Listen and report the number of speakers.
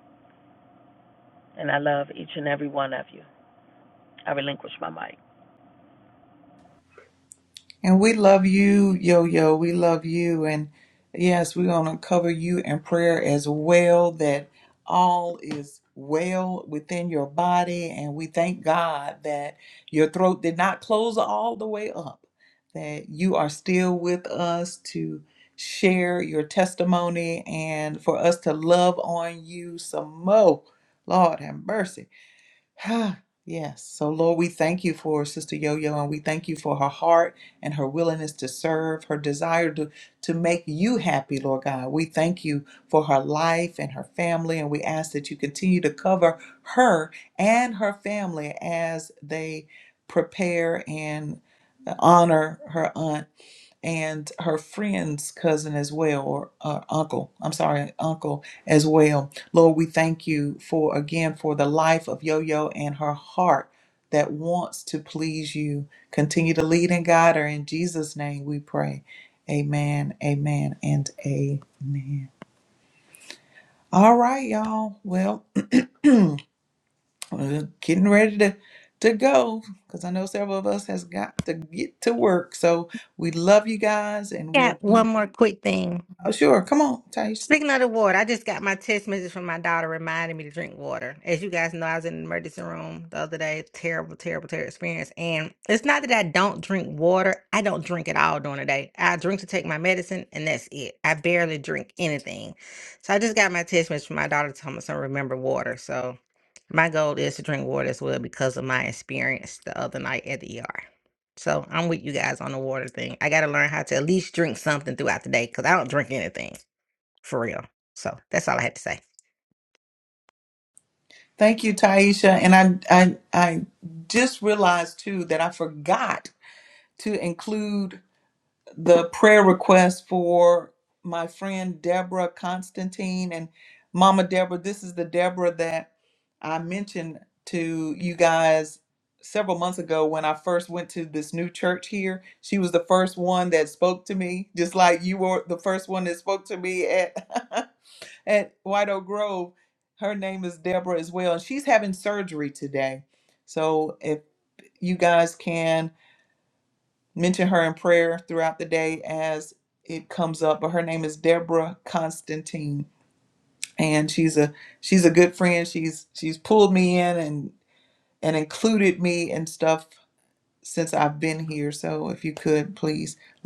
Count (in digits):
3